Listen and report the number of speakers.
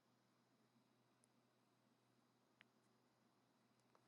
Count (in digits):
0